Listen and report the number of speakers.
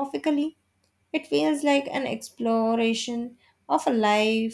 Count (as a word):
one